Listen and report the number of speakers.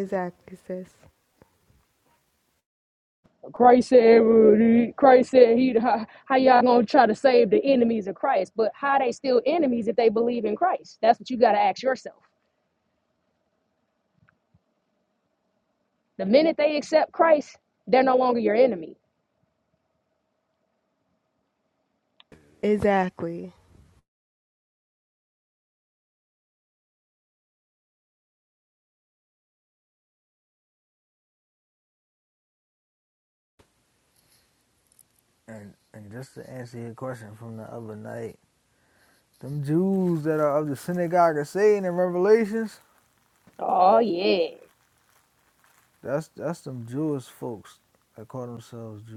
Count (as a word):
three